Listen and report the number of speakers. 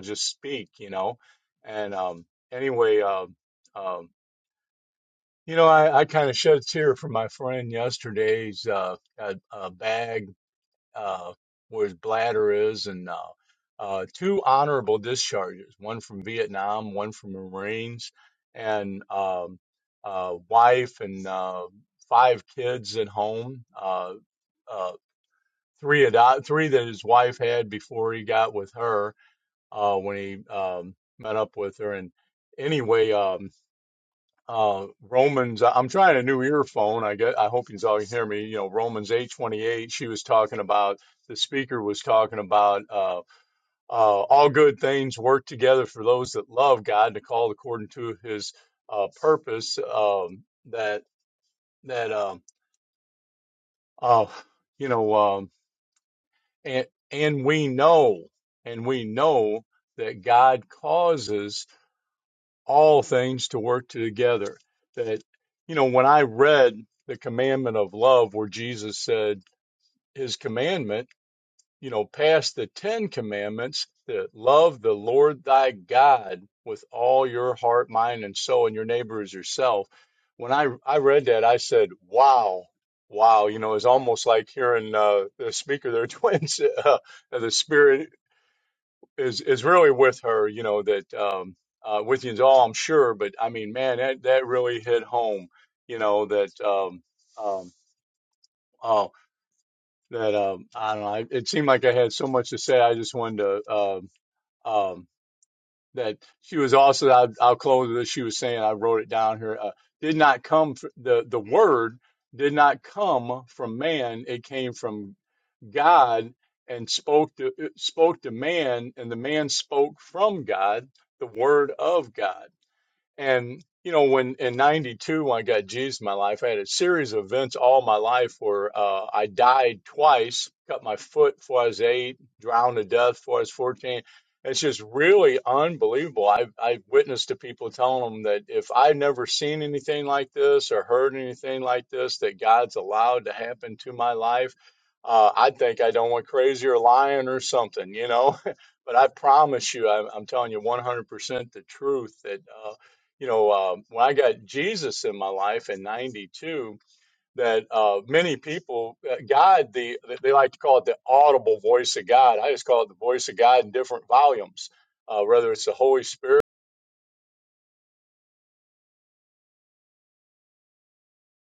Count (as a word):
one